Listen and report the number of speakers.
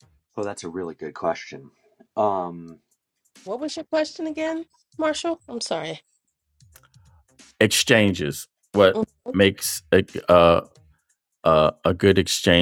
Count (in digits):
3